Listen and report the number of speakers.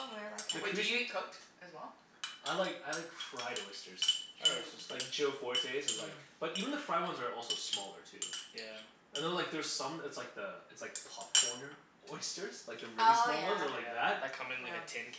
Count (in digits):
4